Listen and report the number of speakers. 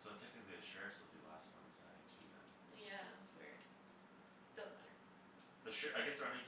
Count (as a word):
two